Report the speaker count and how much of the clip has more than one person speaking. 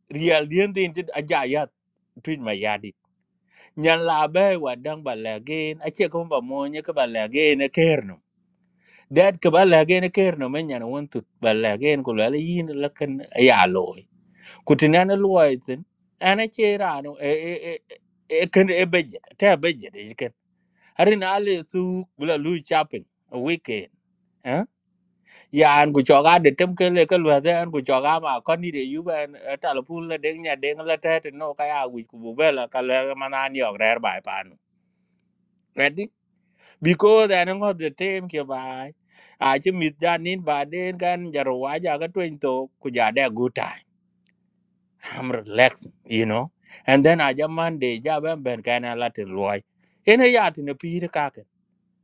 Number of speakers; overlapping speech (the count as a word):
one, no overlap